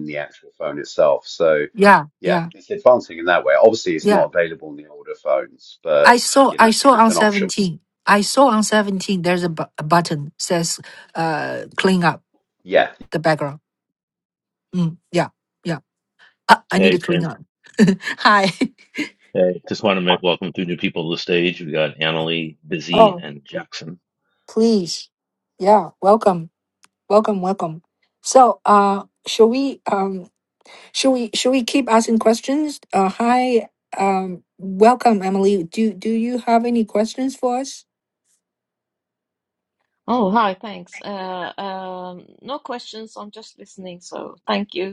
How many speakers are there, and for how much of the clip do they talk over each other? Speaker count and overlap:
four, about 5%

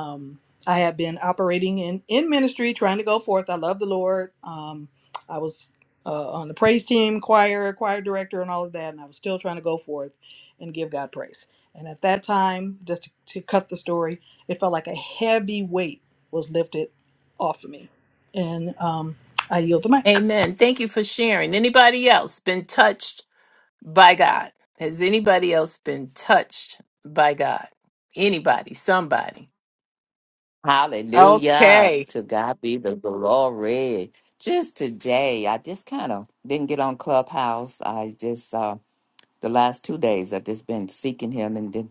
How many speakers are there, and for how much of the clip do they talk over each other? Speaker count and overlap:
three, about 2%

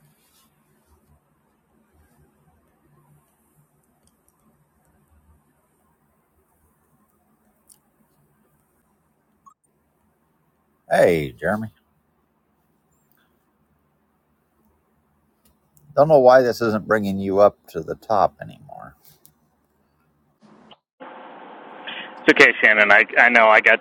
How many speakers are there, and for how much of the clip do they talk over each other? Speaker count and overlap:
two, no overlap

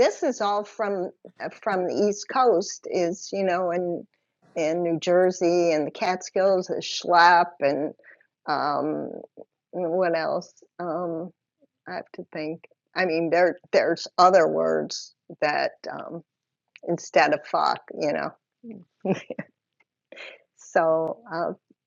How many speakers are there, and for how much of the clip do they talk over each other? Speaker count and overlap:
one, no overlap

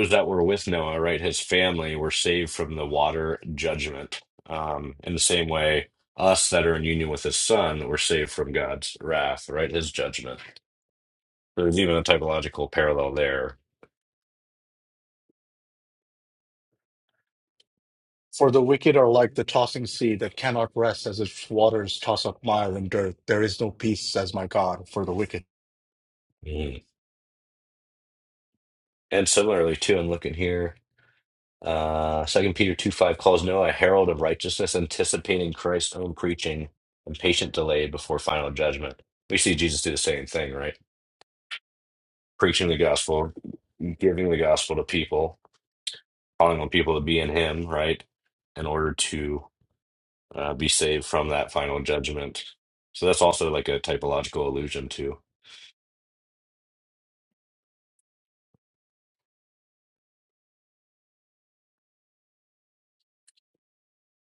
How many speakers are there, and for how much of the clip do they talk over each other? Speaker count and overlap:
two, no overlap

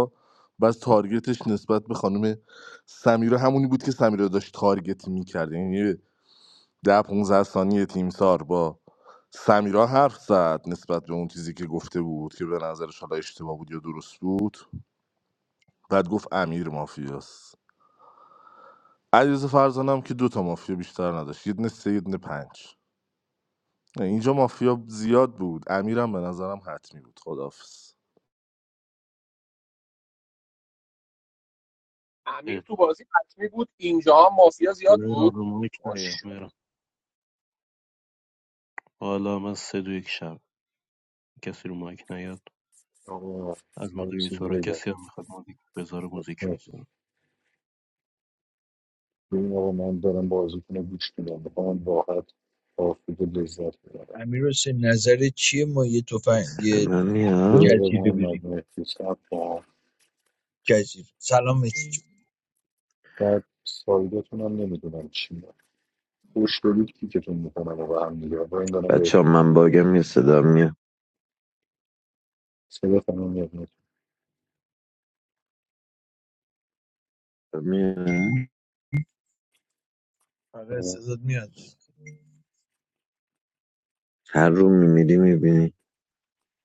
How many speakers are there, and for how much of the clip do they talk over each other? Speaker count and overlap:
six, about 5%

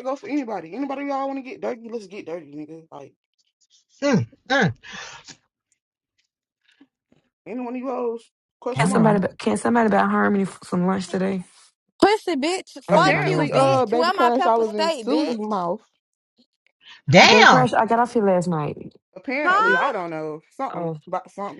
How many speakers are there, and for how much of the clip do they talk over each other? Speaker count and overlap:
four, about 19%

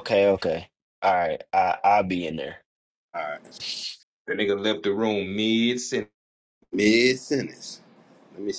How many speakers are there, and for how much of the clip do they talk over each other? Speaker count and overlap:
three, no overlap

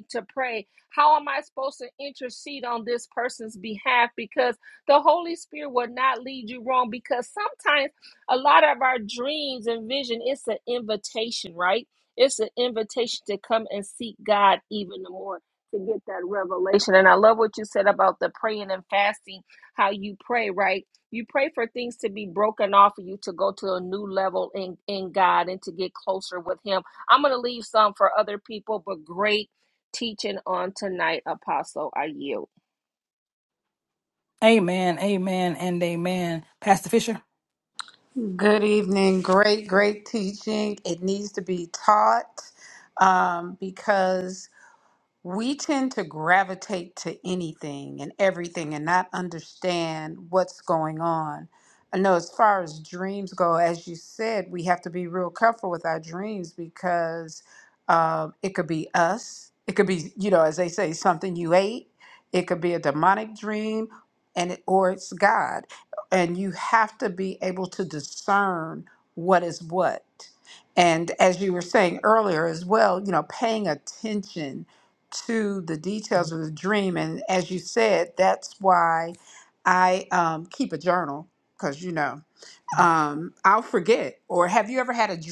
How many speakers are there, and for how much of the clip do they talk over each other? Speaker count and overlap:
three, no overlap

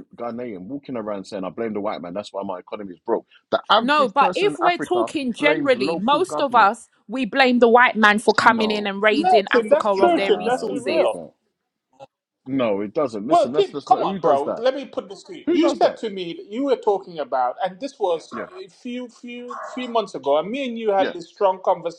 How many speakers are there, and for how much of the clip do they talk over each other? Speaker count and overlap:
three, about 35%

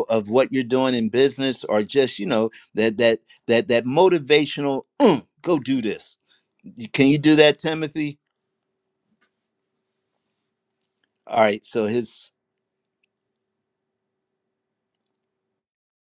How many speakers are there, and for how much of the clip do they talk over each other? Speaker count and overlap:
one, no overlap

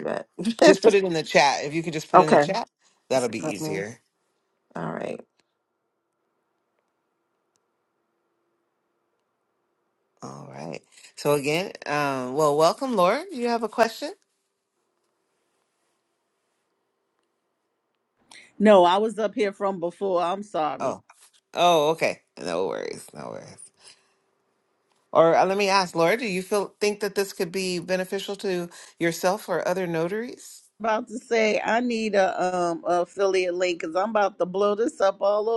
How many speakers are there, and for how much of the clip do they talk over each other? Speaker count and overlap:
three, about 2%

